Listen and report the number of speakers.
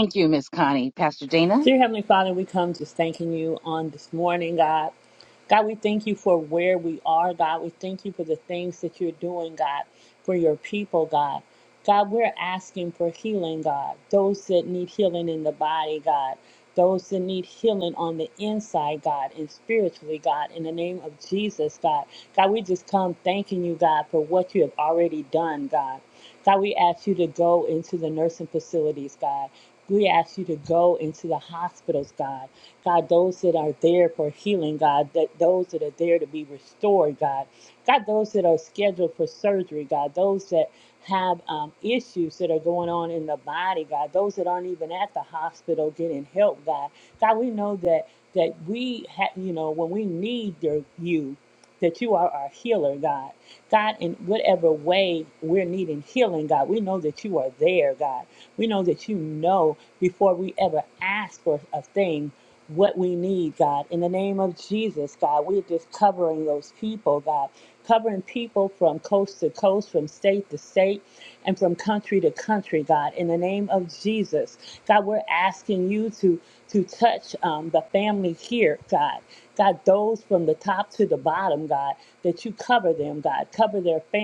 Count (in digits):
2